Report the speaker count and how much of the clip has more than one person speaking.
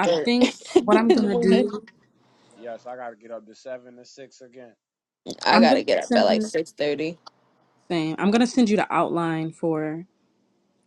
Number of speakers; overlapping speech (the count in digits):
3, about 25%